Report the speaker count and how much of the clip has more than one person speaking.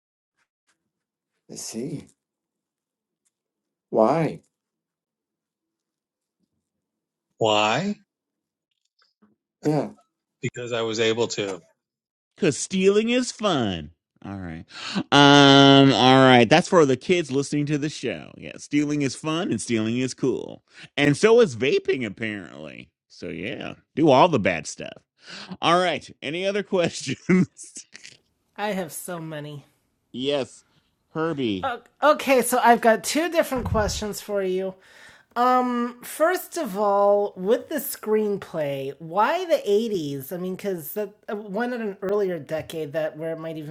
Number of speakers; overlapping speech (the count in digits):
4, no overlap